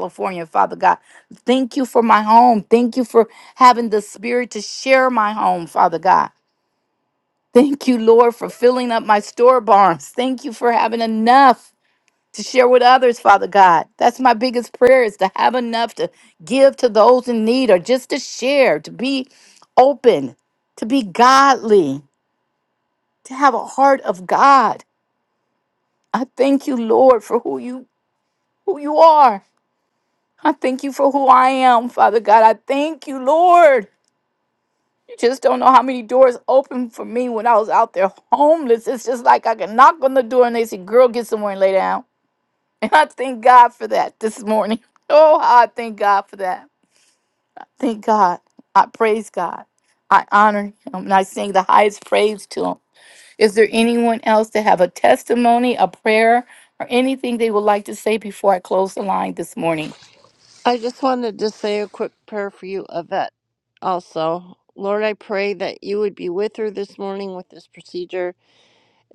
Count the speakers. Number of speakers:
2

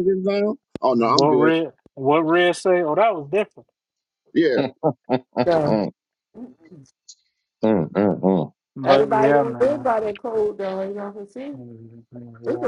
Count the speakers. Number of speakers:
4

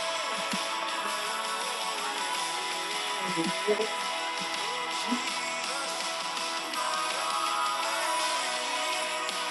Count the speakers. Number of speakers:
0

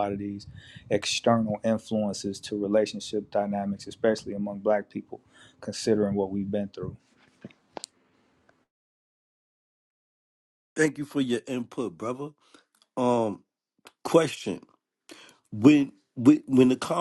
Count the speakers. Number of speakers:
2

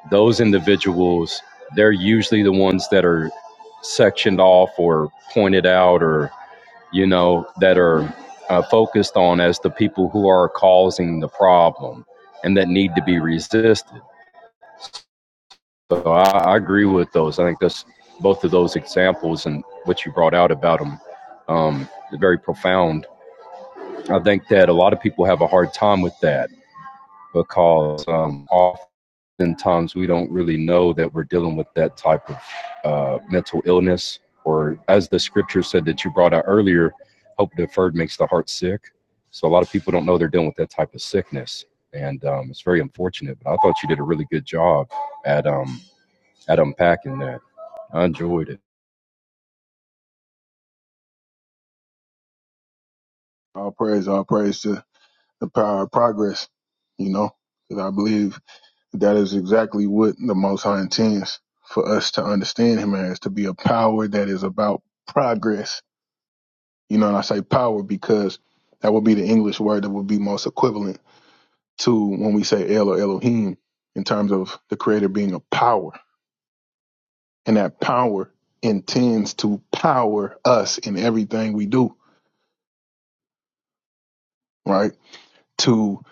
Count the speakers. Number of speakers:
2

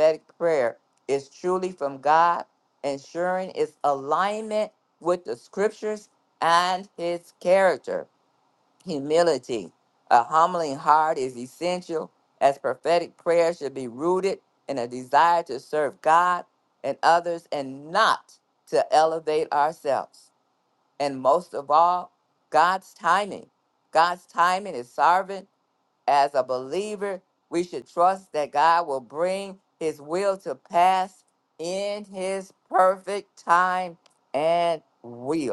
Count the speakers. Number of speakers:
1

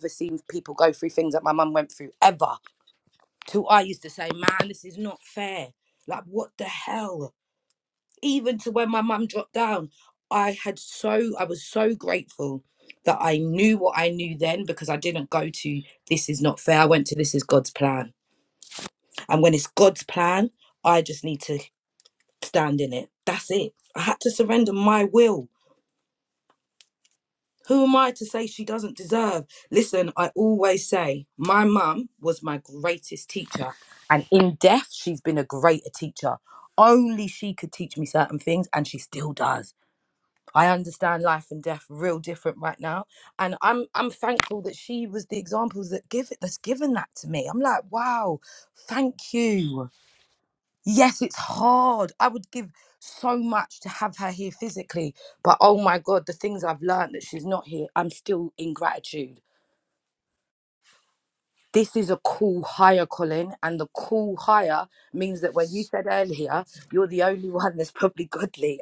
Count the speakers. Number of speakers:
1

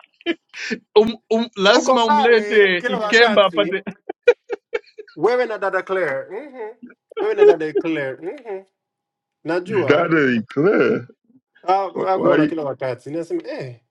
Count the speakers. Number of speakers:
3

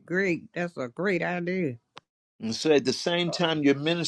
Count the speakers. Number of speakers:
2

